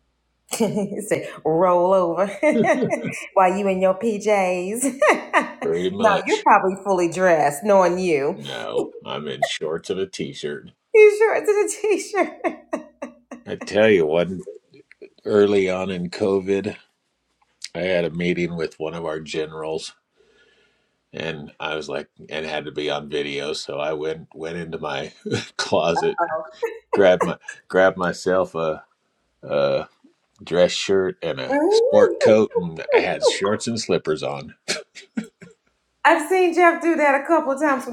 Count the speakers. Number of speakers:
2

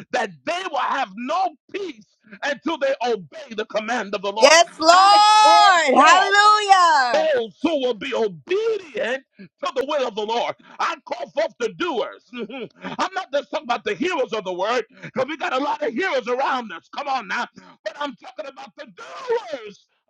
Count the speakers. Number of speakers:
2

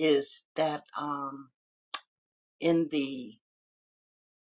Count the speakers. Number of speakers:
1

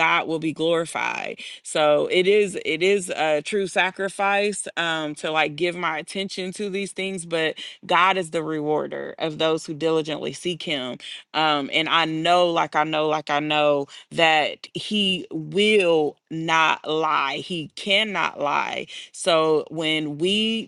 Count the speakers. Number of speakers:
1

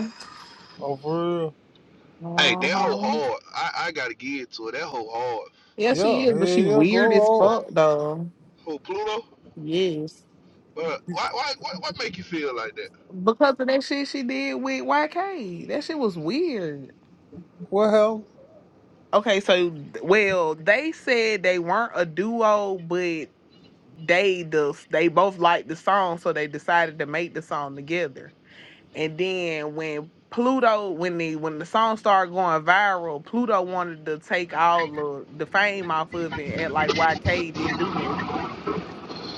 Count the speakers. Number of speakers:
3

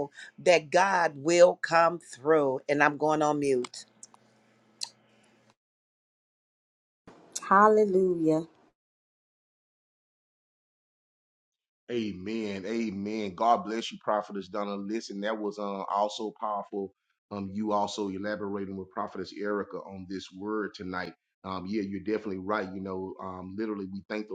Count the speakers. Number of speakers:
3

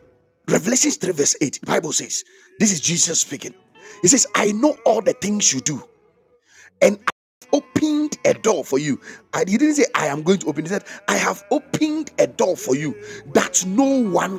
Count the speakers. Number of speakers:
1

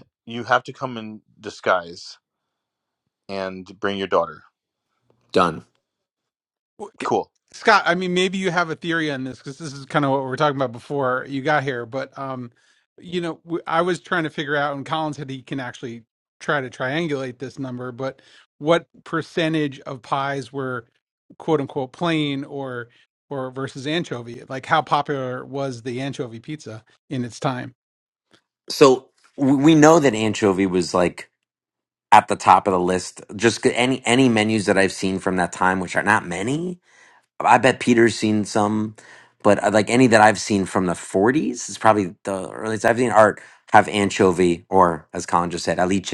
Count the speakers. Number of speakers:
3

